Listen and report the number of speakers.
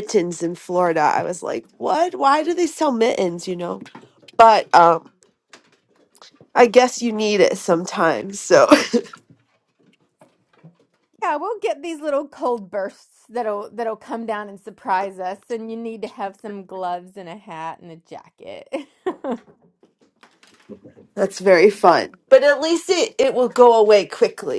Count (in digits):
2